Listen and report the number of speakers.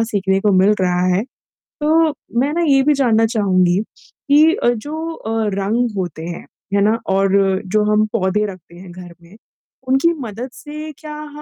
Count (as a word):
one